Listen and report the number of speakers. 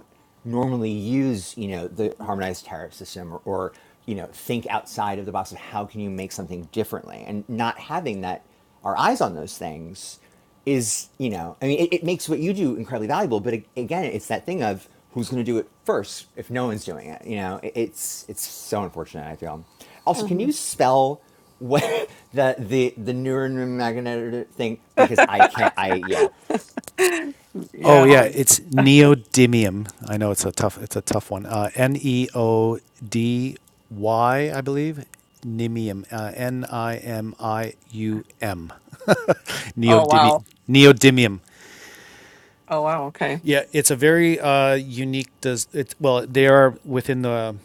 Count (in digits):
3